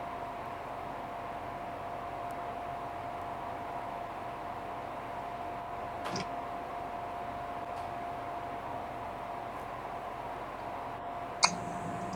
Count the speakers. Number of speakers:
0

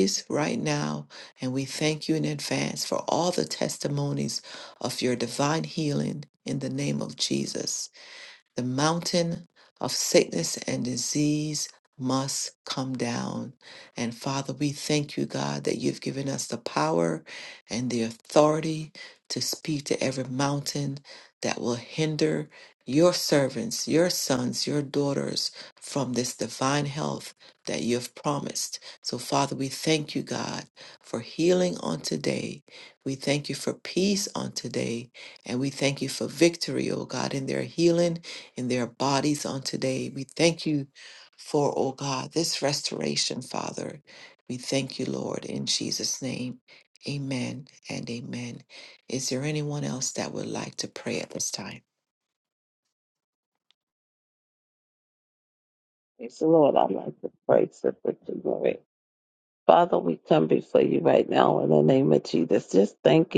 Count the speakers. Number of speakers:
2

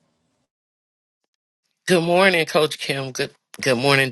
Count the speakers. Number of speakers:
1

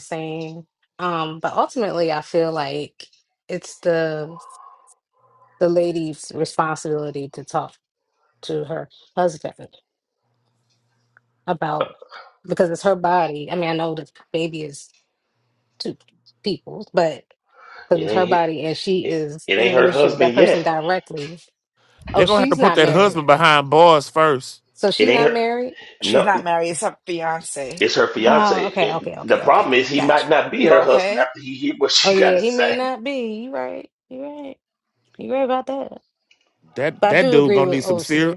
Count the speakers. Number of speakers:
4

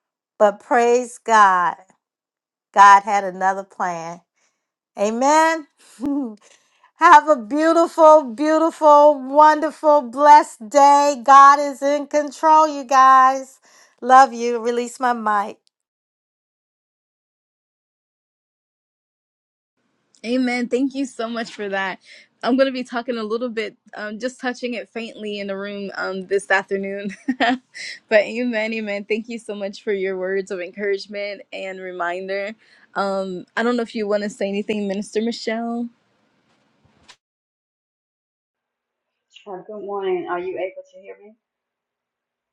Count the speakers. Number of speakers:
3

